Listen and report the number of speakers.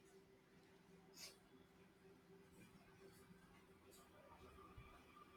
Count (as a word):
zero